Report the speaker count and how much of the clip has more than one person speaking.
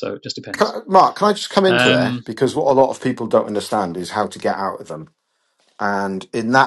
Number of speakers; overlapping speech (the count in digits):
2, about 11%